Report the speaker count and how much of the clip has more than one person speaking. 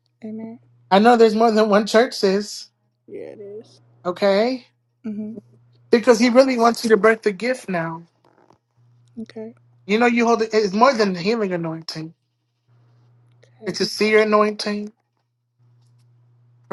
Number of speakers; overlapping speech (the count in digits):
2, under 1%